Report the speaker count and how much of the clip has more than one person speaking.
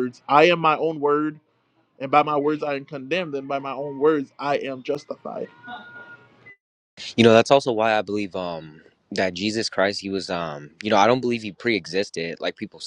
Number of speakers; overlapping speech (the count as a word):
two, no overlap